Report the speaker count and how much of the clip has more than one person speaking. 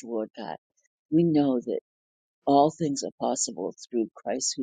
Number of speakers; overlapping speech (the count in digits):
1, no overlap